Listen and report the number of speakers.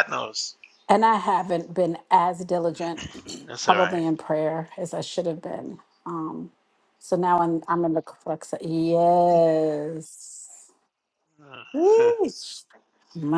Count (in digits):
2